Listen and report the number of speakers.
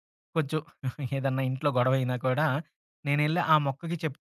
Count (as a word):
one